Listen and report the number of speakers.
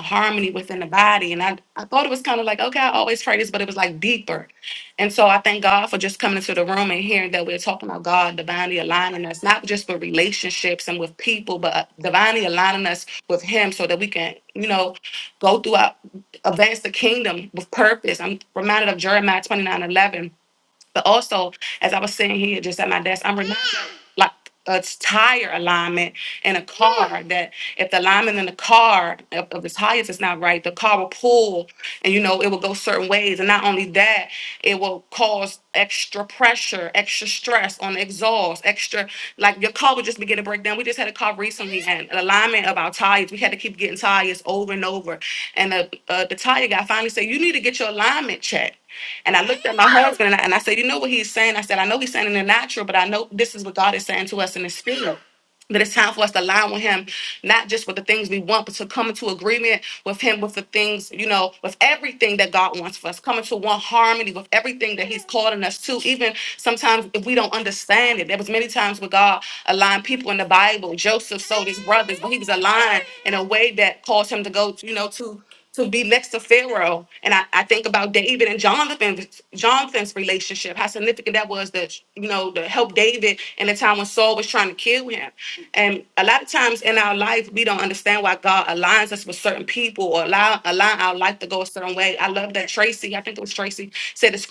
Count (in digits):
1